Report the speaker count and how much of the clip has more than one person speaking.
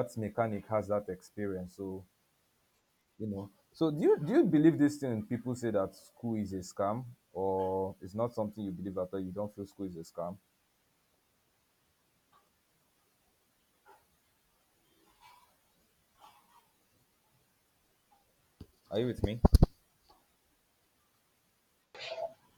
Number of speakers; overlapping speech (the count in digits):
1, no overlap